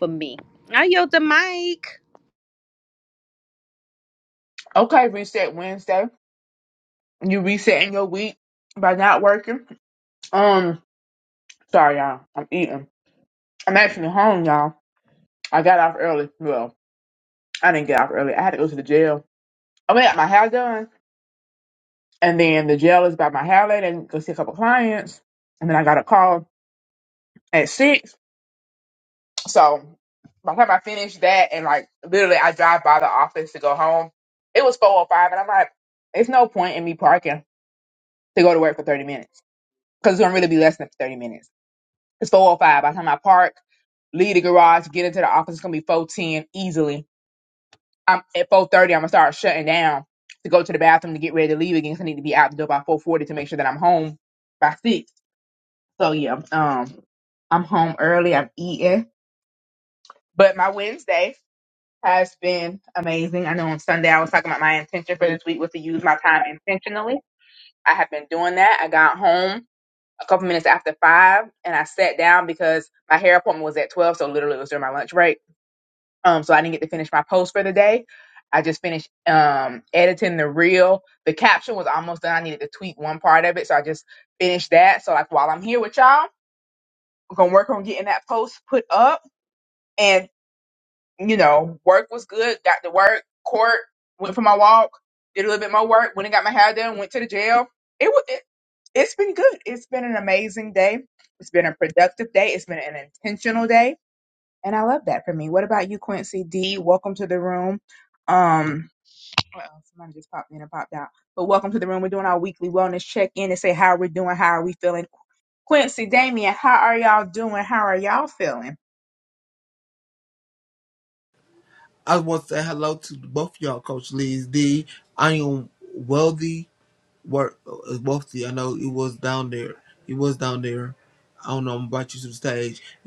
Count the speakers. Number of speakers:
3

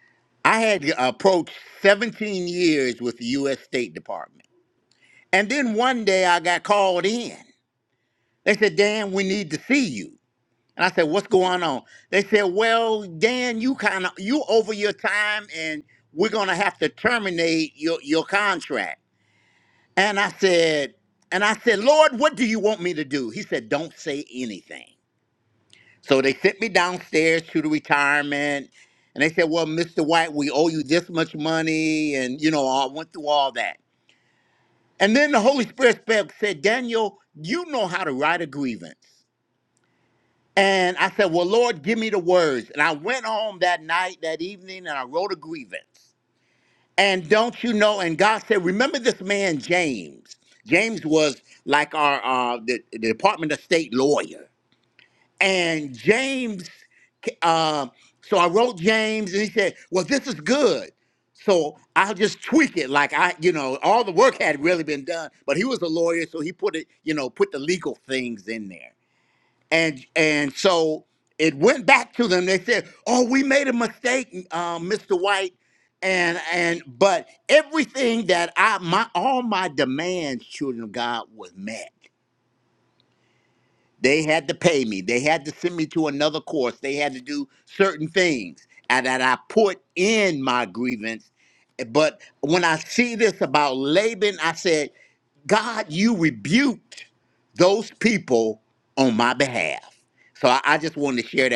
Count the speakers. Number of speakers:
1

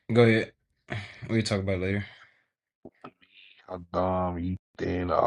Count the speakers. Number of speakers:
2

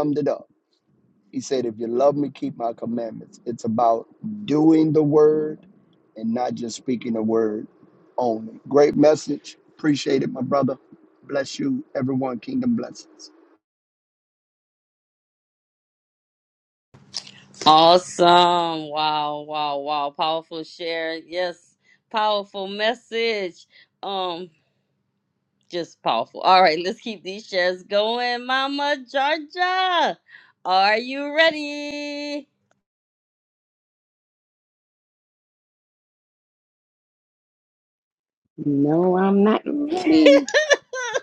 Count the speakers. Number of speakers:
3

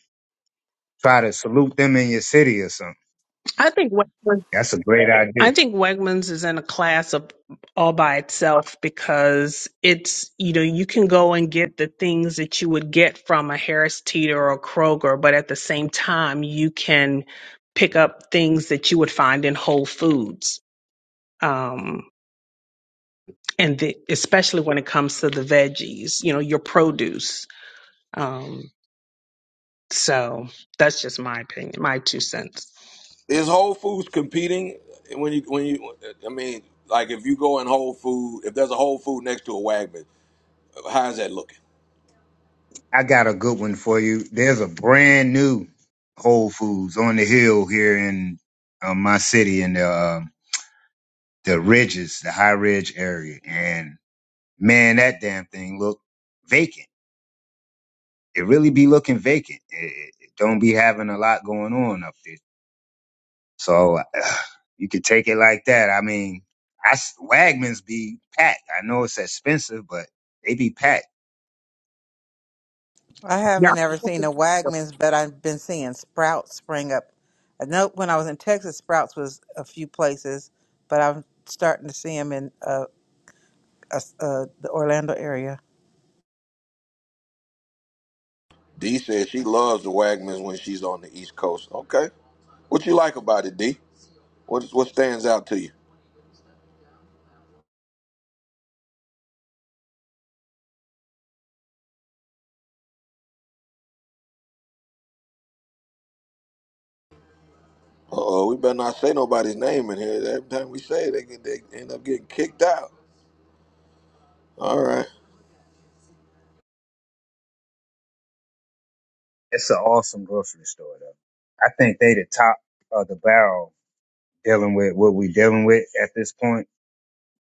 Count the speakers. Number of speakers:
4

